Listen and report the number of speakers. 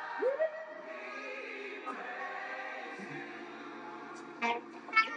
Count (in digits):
0